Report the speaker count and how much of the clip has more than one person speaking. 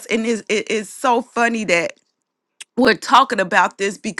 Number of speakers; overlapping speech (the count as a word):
one, no overlap